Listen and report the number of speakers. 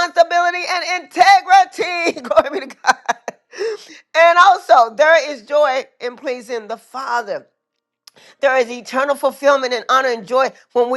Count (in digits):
1